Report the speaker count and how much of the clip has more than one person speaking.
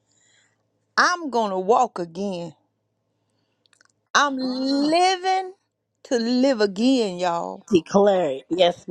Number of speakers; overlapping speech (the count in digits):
2, no overlap